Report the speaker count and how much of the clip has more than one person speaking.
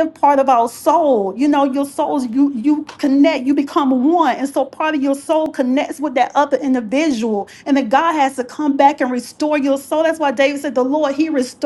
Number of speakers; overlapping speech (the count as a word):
one, no overlap